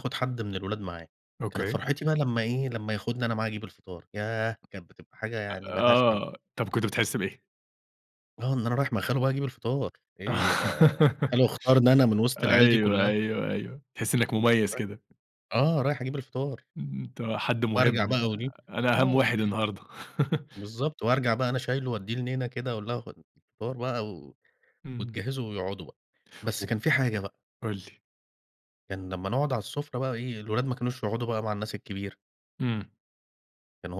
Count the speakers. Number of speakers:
2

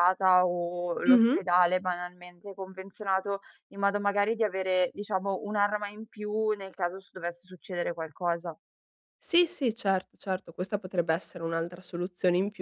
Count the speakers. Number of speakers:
2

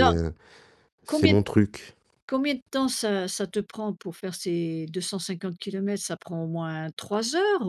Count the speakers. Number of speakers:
2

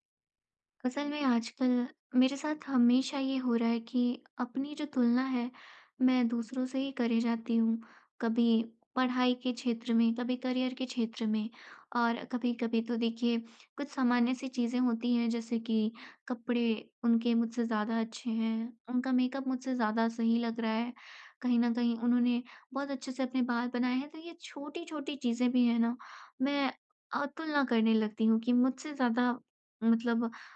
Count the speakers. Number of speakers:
1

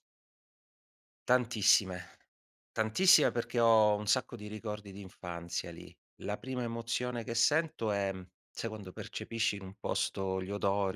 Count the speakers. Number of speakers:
1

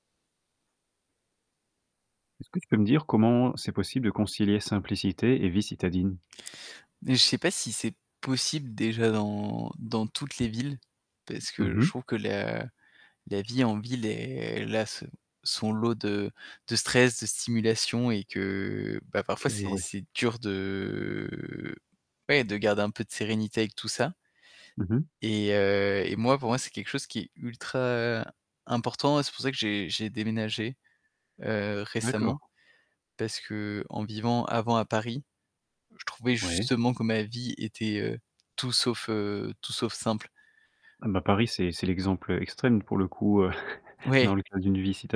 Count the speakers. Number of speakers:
2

